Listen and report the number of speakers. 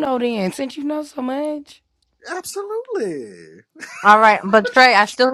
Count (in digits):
3